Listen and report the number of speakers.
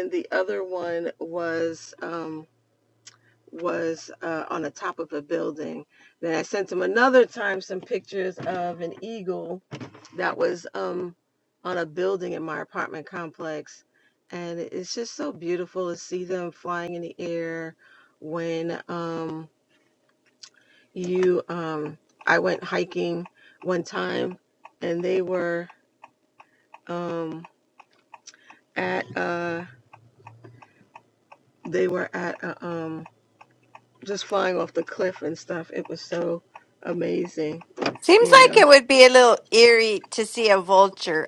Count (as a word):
two